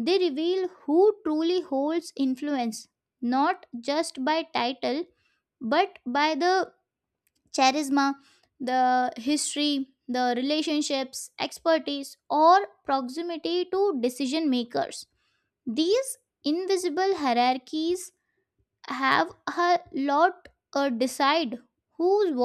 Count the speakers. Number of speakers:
one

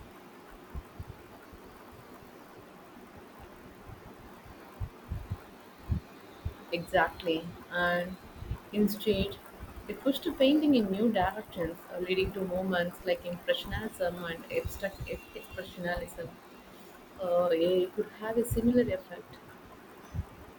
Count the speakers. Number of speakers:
one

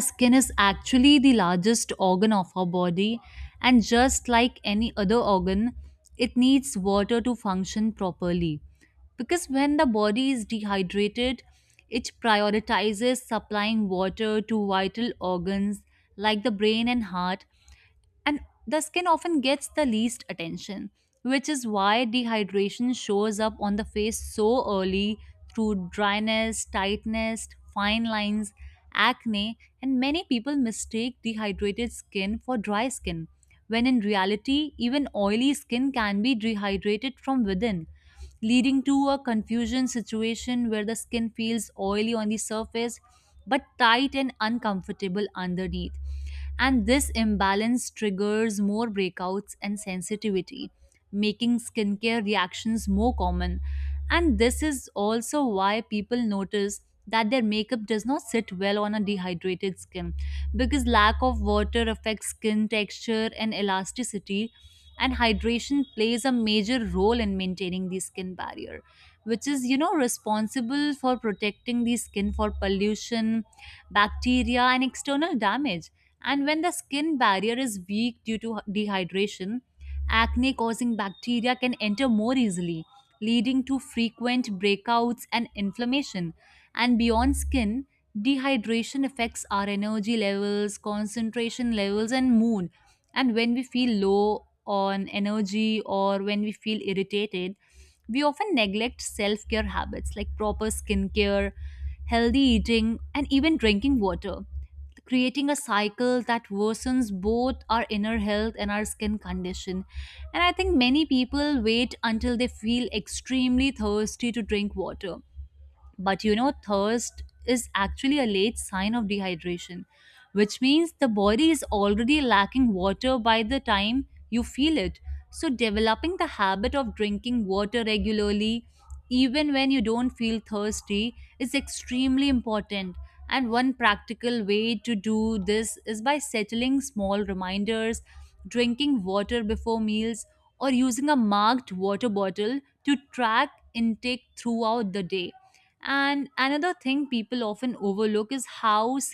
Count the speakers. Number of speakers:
one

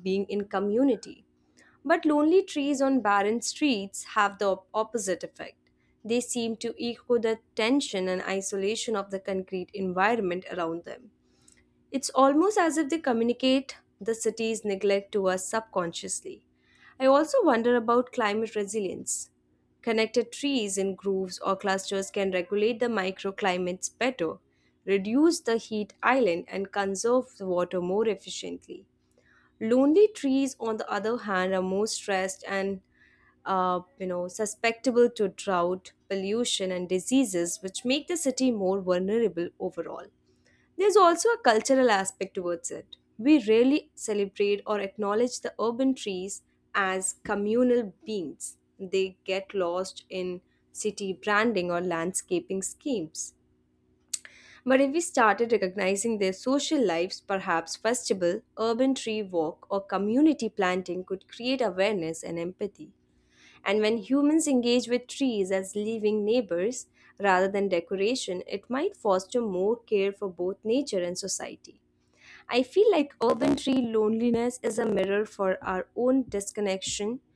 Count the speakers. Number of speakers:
one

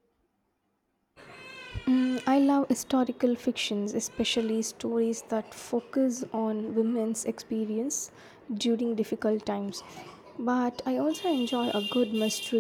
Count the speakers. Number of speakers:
one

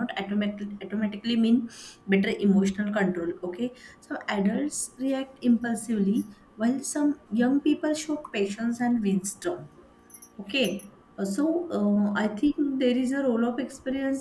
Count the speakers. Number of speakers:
one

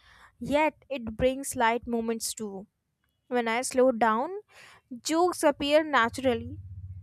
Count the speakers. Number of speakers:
one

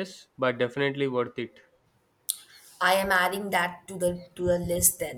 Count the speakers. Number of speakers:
two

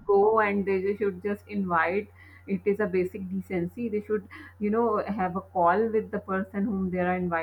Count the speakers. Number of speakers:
one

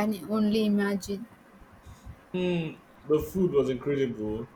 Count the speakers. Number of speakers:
two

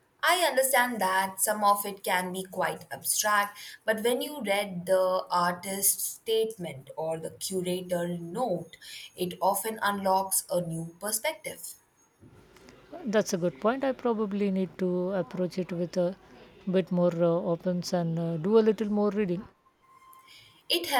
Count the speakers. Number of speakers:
two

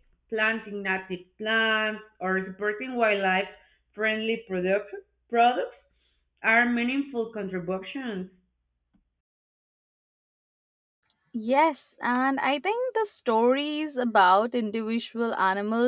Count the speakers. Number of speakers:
two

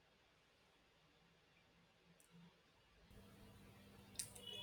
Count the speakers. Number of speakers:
zero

